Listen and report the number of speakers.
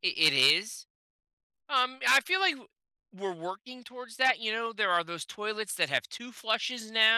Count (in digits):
1